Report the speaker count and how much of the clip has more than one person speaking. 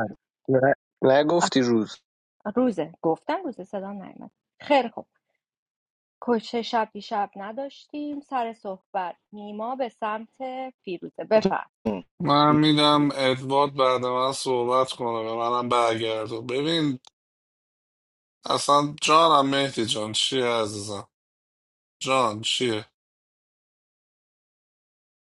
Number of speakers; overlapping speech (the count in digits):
3, under 1%